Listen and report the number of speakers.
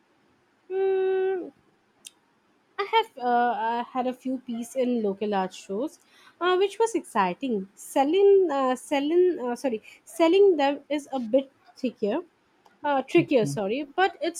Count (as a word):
one